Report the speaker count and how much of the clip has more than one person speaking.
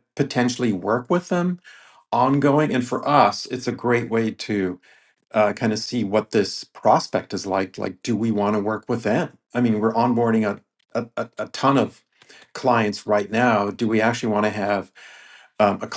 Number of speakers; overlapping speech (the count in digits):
1, no overlap